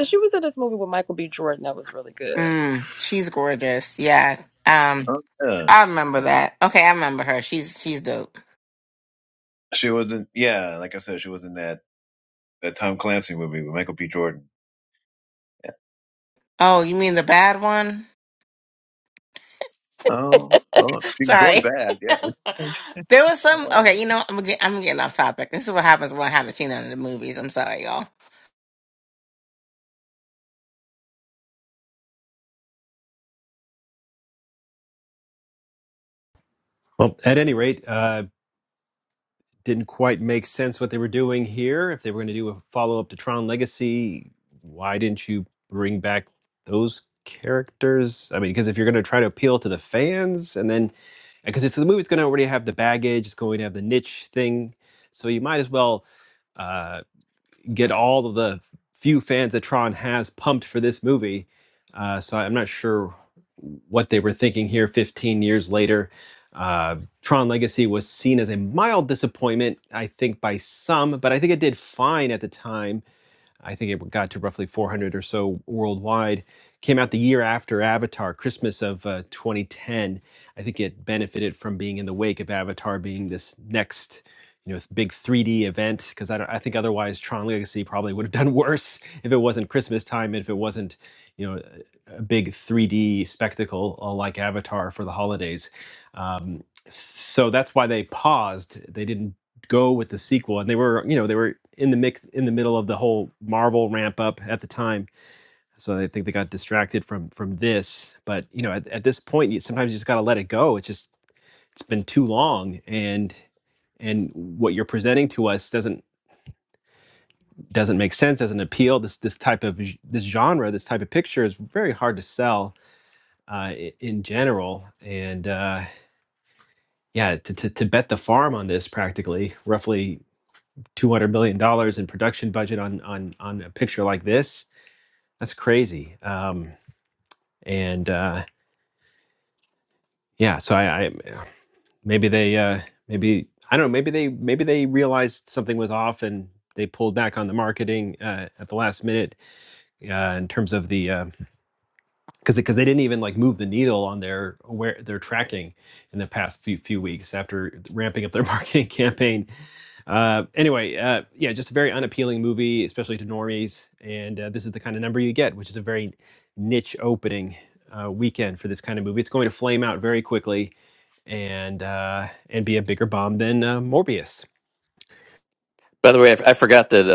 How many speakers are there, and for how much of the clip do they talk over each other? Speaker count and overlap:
5, under 1%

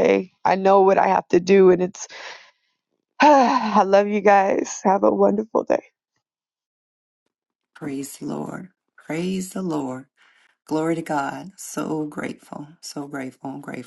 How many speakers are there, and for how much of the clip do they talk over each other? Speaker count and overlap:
2, no overlap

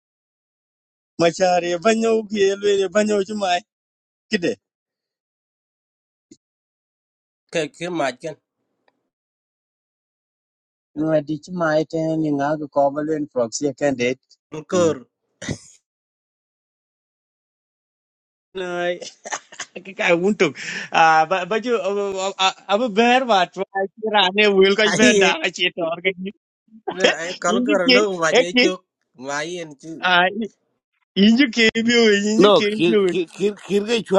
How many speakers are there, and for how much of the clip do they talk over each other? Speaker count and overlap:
3, about 6%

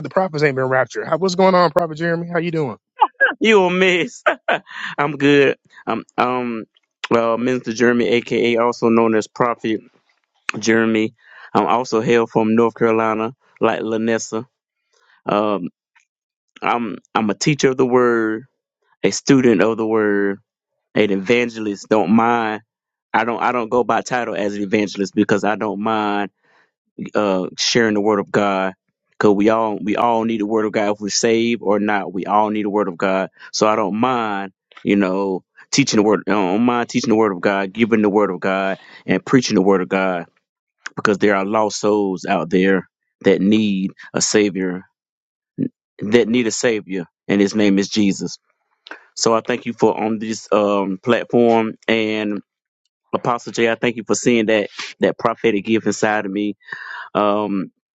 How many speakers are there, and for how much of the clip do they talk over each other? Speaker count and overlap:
2, no overlap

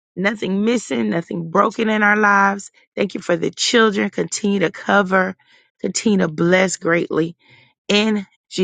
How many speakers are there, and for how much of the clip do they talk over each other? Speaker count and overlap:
1, no overlap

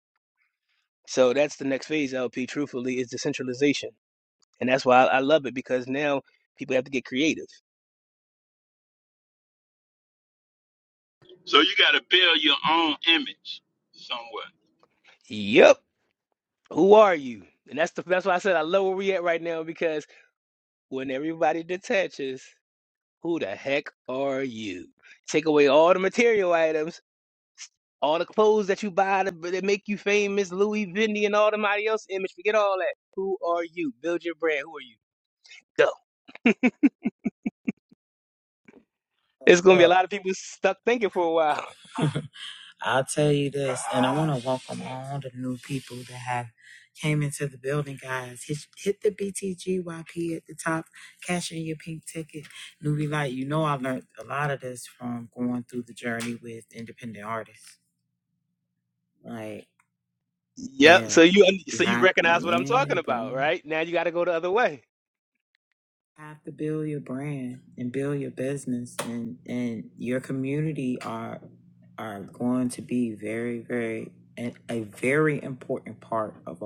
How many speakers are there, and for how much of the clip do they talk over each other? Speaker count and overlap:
3, about 3%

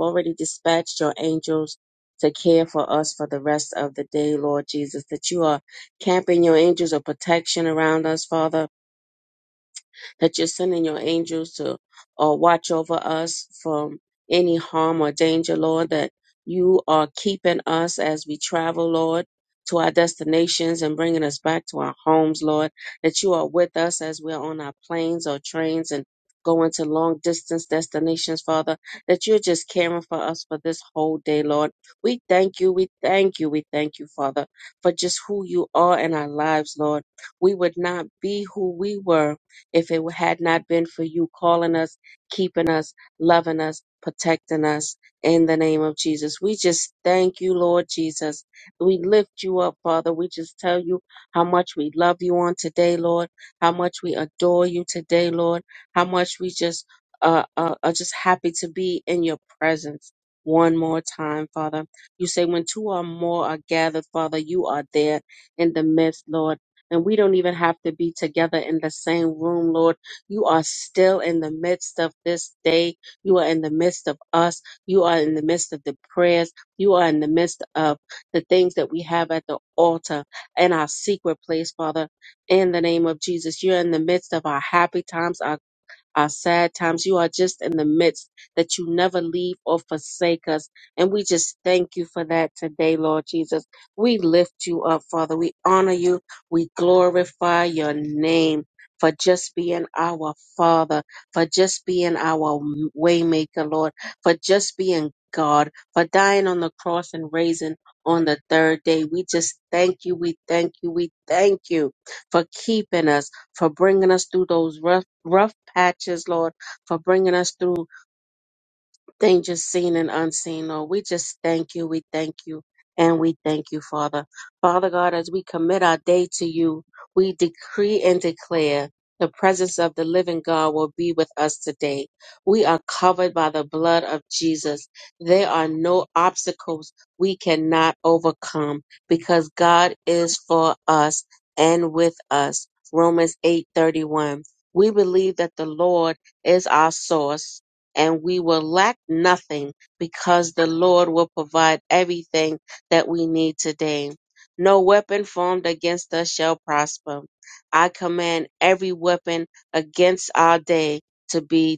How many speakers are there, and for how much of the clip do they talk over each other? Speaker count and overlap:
1, no overlap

